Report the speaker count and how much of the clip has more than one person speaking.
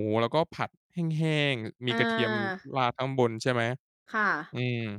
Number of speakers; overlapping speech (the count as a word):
two, about 10%